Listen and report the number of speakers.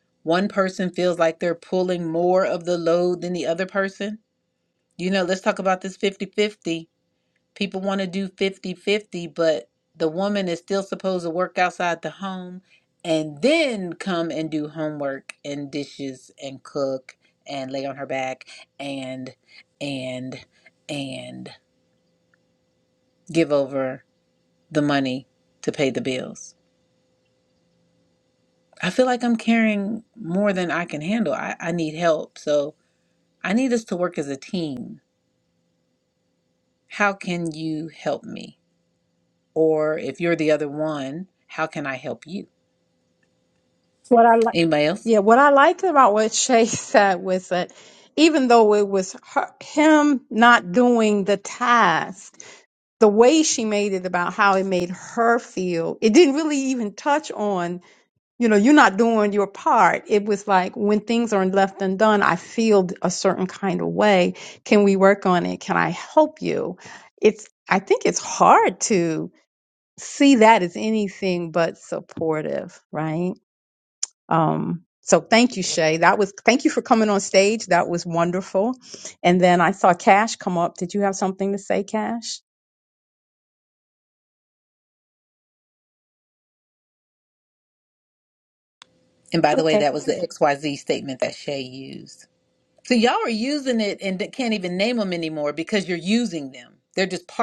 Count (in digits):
2